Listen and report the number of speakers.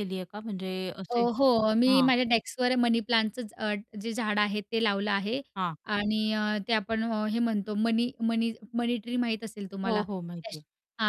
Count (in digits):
2